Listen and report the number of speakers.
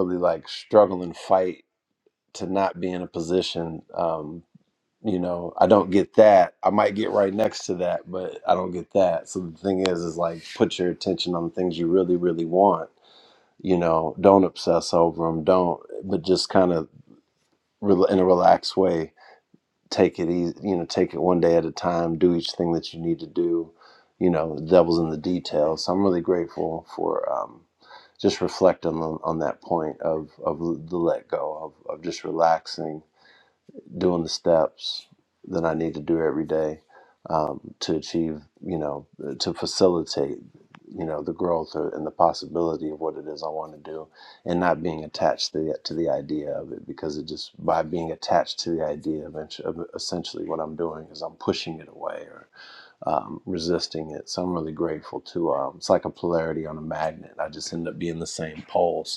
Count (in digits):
1